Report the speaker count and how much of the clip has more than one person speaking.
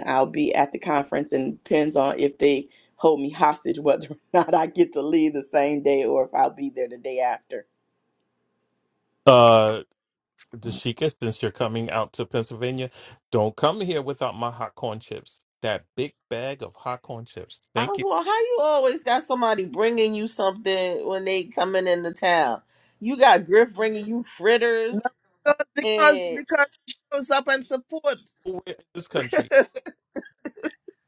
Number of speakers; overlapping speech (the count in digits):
4, about 3%